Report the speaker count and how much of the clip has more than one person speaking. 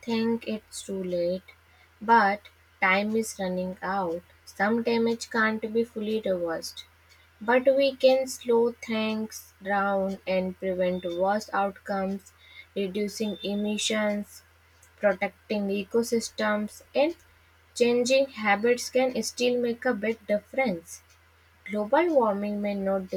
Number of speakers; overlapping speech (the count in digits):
1, no overlap